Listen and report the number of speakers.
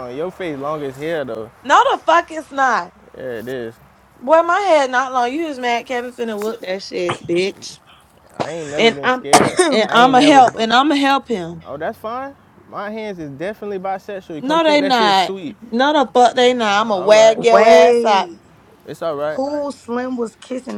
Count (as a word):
three